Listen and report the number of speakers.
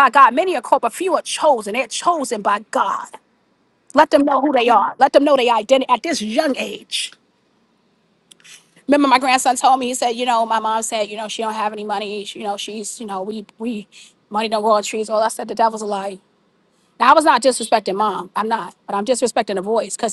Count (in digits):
1